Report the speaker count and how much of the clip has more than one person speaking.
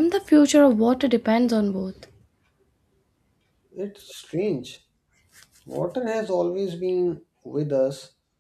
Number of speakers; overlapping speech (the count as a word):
two, no overlap